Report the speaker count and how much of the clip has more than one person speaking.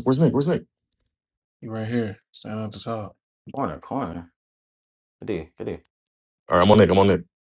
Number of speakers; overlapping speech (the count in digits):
3, no overlap